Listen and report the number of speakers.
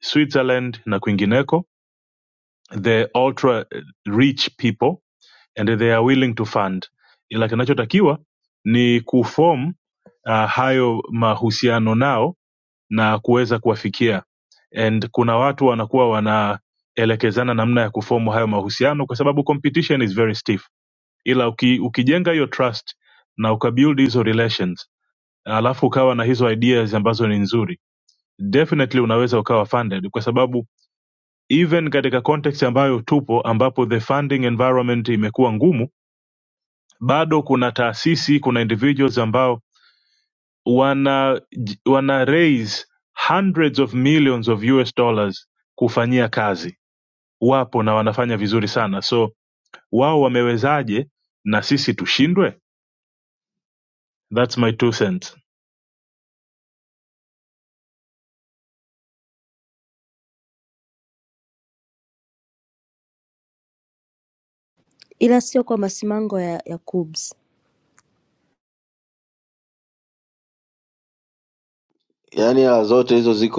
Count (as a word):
three